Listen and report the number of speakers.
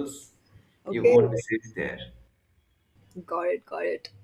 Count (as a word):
two